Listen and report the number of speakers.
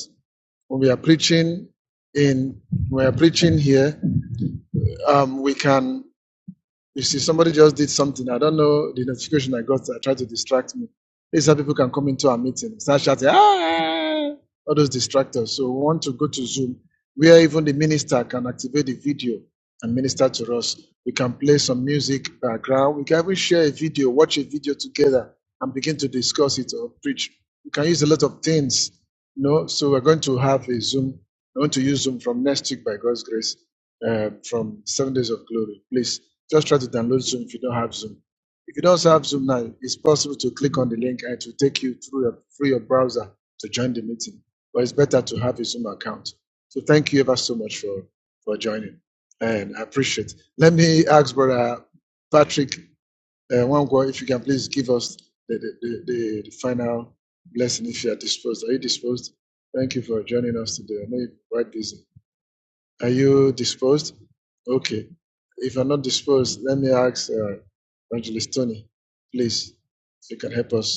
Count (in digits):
1